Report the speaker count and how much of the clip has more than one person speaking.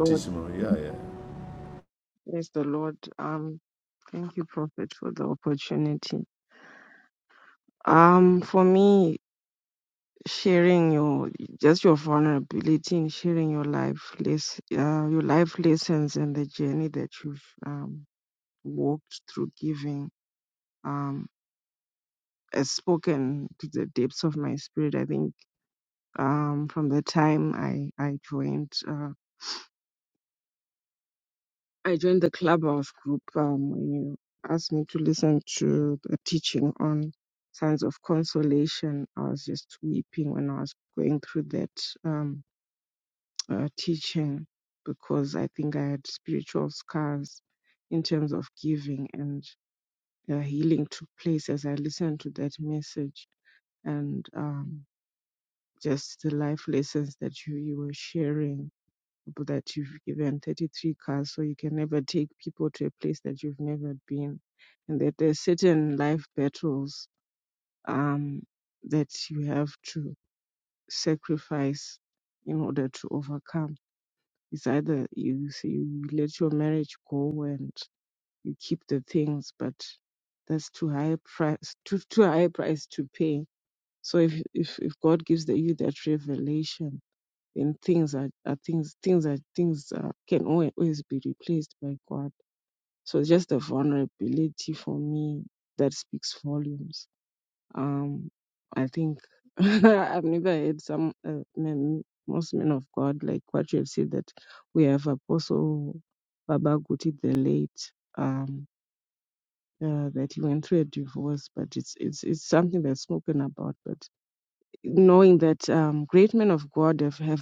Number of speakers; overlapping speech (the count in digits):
2, under 1%